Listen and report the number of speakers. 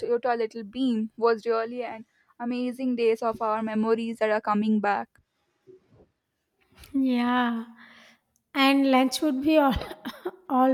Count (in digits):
2